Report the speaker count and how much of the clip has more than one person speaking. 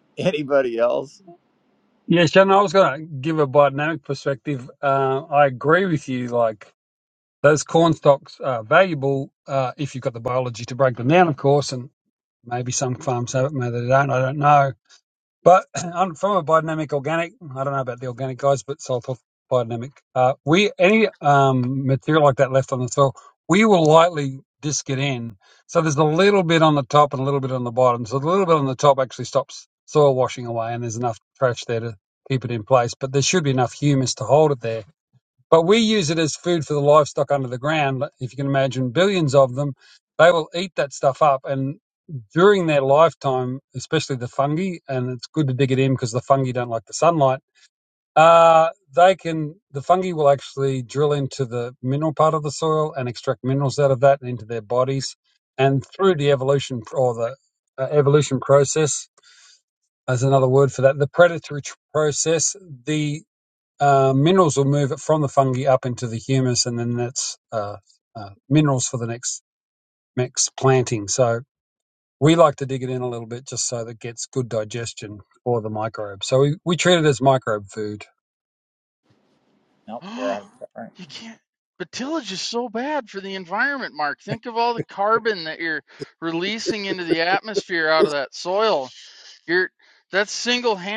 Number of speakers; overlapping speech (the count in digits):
3, under 1%